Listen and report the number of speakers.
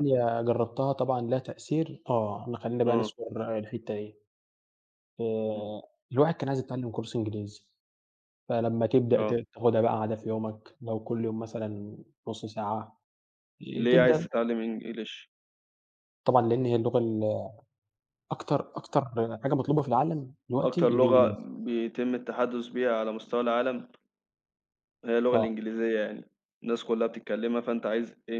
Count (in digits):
2